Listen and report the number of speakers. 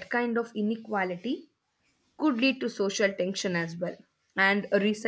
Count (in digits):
1